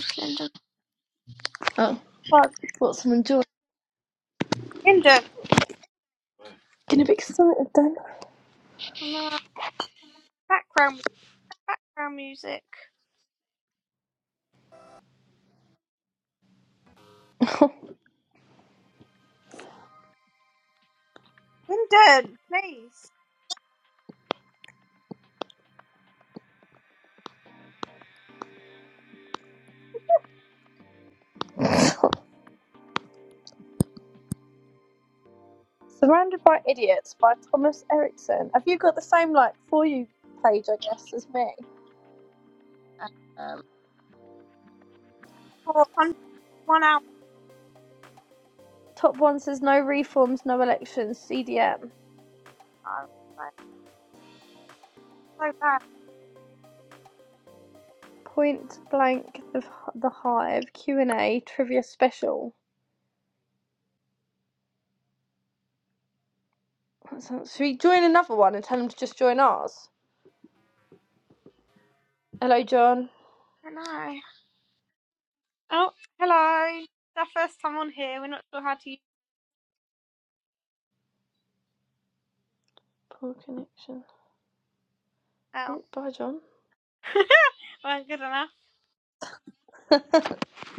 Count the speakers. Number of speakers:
two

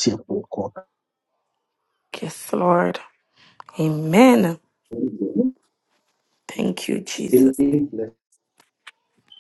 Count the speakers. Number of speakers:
two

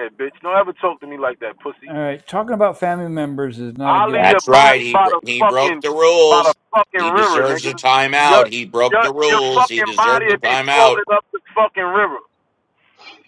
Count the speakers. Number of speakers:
three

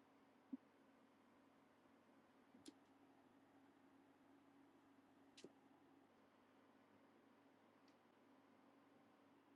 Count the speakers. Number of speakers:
zero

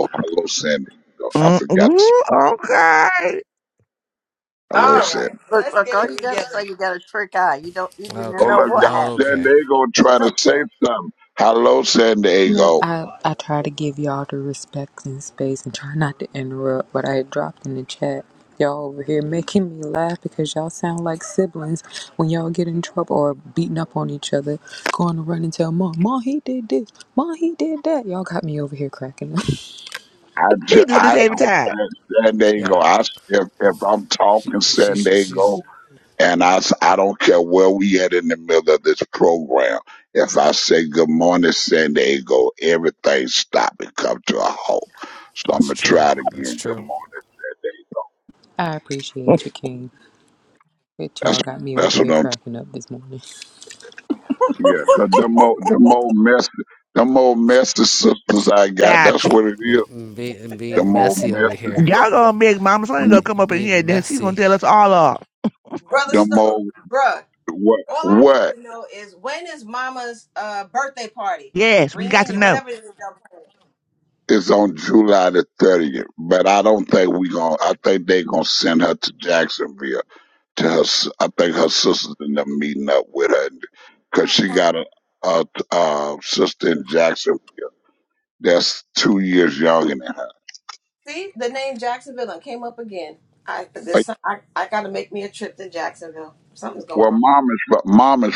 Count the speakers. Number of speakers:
six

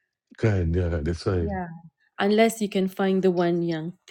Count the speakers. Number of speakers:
two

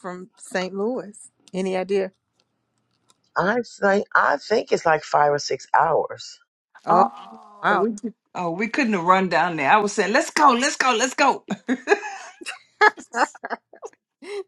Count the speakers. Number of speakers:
three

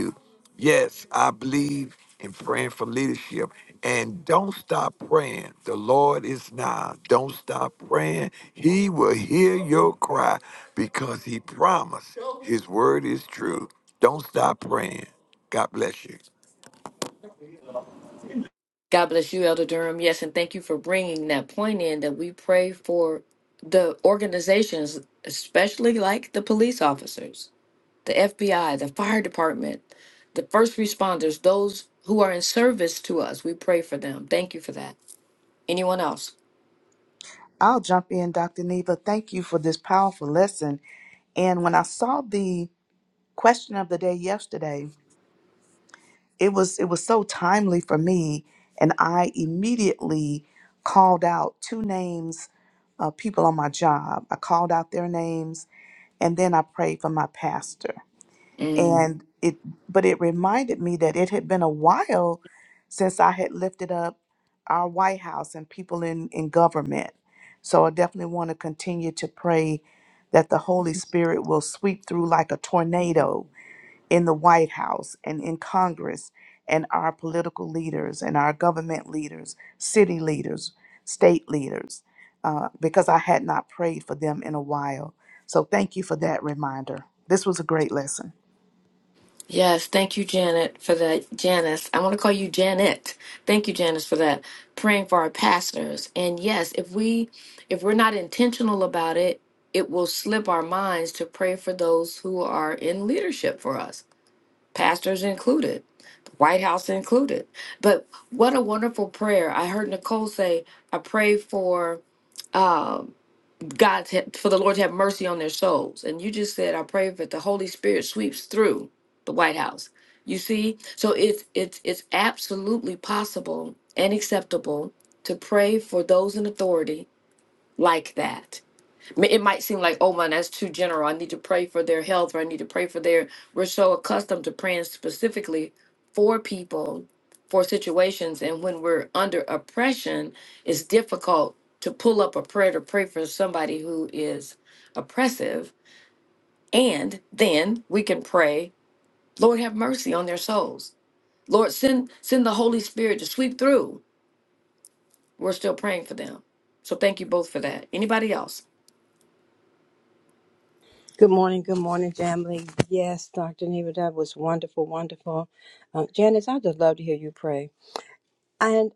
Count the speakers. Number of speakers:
four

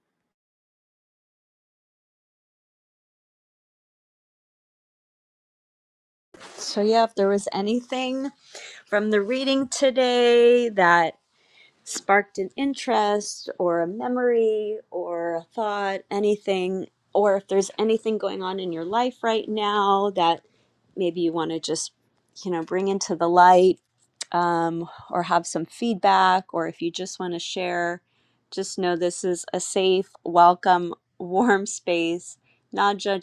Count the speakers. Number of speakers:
one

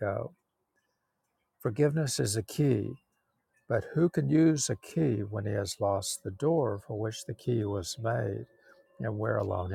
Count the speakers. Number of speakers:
one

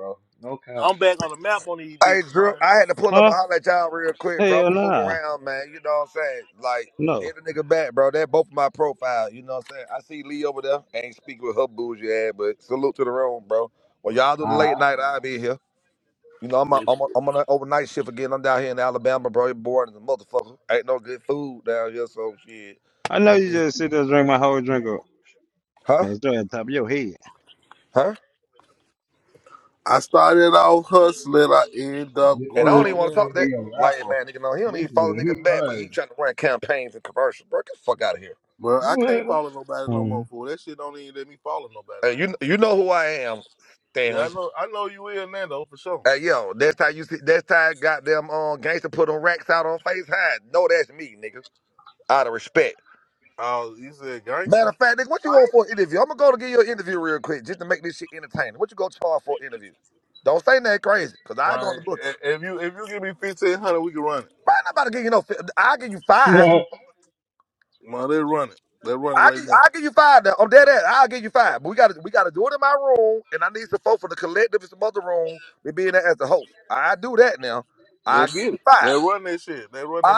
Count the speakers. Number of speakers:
four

